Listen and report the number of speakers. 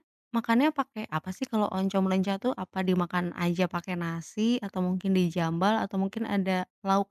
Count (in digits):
1